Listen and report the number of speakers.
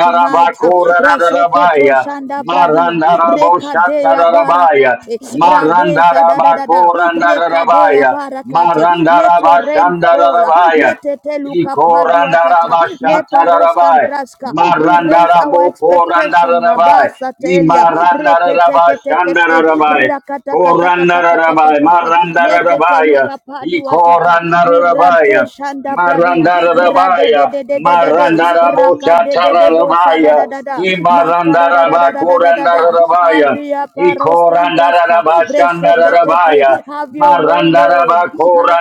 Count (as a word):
two